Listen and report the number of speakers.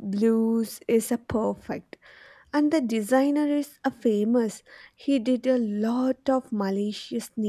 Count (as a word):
one